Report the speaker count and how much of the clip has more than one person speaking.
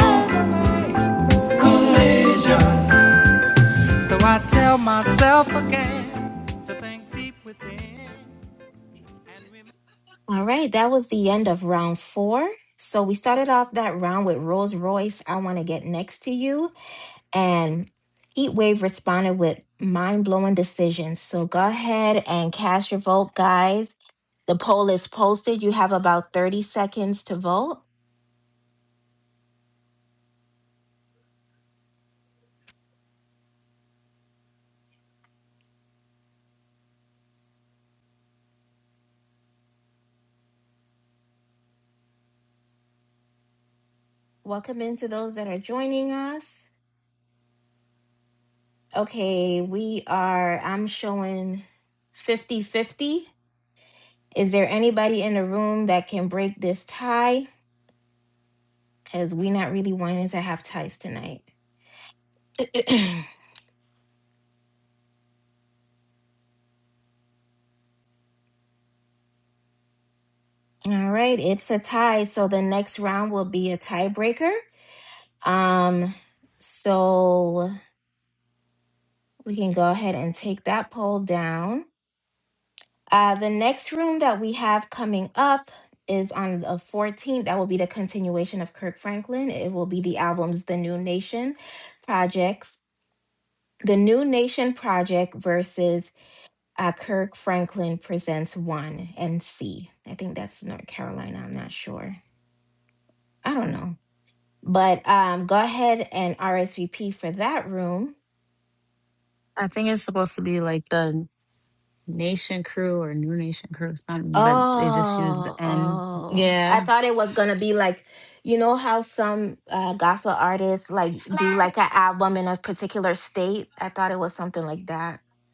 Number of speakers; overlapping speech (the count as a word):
three, about 2%